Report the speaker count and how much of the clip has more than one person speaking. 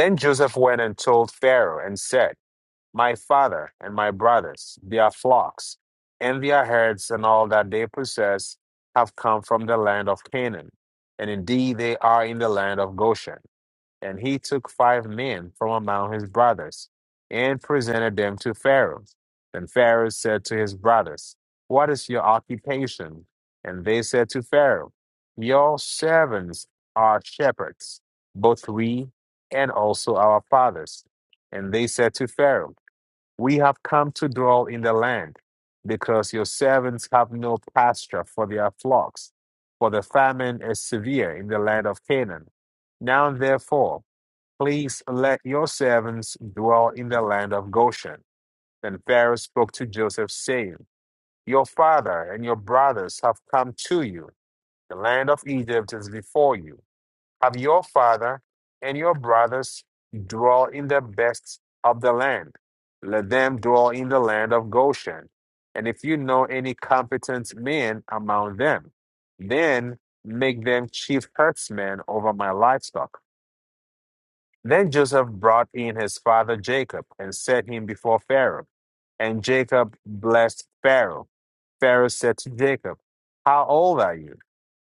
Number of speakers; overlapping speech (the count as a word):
one, no overlap